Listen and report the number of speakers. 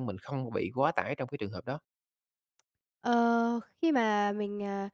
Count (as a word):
two